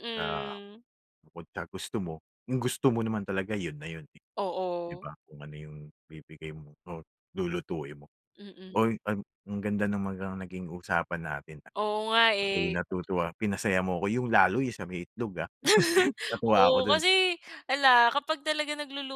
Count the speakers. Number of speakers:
two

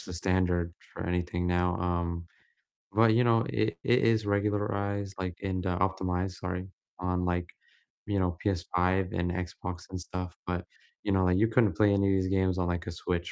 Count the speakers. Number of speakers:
one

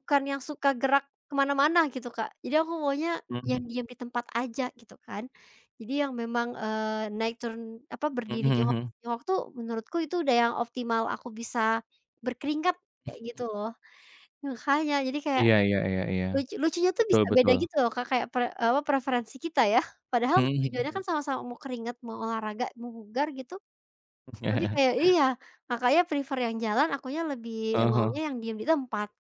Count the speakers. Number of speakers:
two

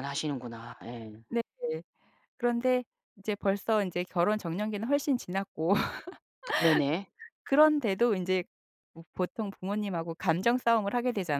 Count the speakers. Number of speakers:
two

